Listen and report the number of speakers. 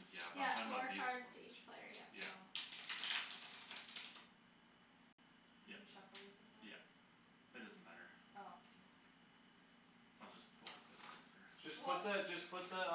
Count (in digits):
4